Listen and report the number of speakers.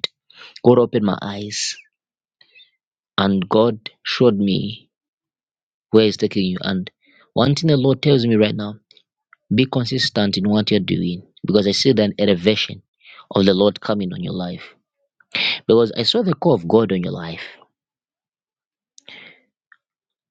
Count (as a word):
one